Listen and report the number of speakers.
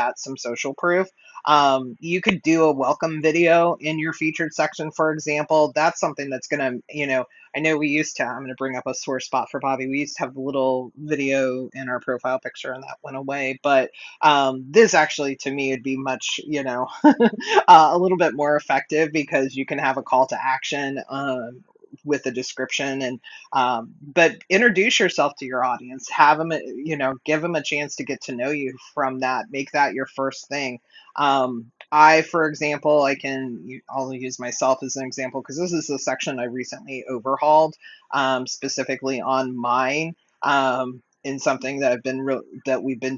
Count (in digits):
1